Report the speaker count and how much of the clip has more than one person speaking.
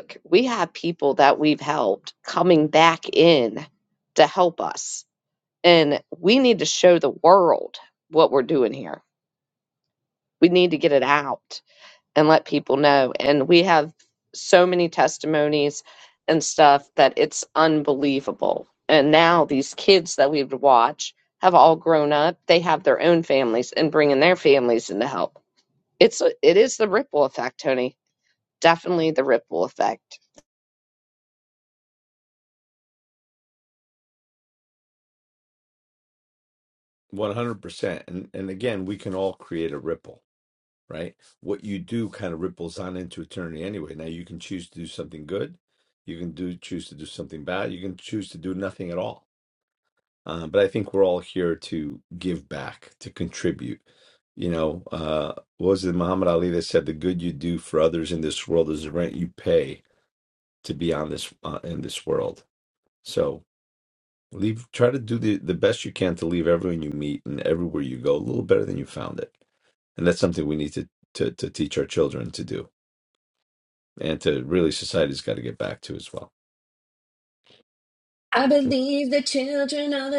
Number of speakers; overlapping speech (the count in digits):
3, no overlap